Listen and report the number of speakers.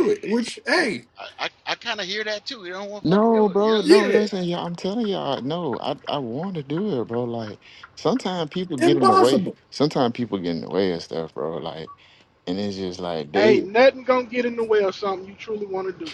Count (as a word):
four